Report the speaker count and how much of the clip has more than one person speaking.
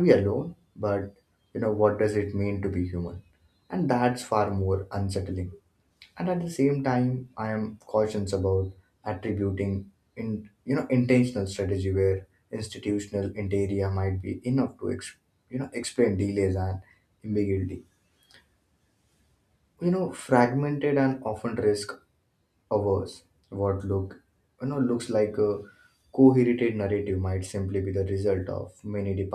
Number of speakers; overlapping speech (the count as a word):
one, no overlap